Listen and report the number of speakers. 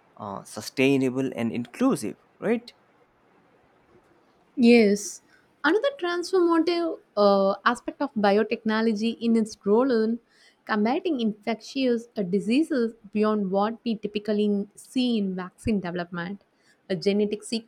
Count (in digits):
2